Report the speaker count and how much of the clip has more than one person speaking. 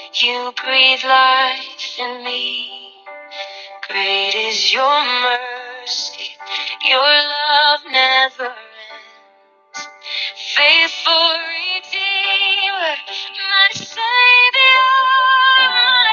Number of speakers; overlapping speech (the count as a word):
one, no overlap